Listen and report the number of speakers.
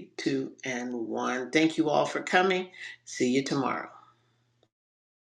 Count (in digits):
1